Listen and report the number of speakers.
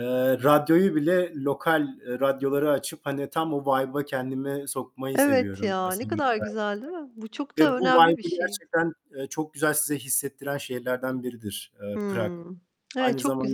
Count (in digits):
2